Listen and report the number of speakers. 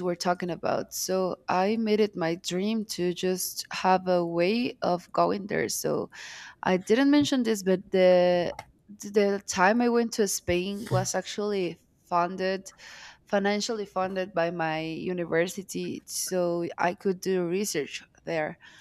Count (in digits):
1